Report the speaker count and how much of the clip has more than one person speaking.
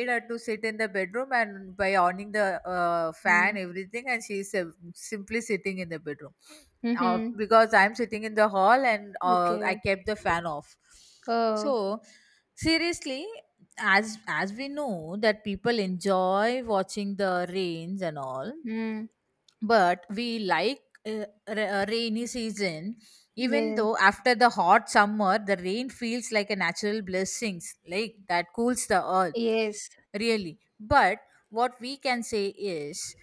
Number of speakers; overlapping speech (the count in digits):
2, about 5%